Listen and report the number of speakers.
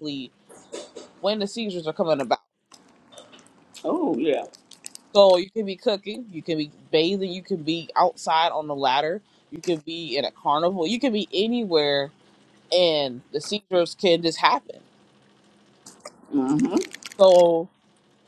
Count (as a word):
two